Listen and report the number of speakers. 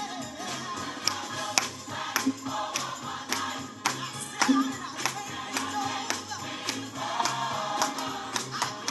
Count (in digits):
0